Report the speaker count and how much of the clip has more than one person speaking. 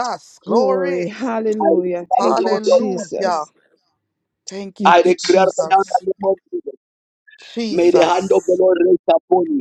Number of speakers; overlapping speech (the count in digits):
3, about 39%